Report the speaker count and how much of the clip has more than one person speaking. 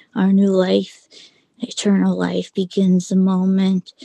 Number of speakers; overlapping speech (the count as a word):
one, no overlap